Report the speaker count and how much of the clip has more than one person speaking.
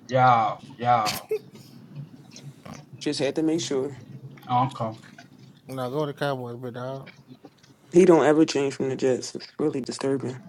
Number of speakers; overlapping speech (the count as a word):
three, no overlap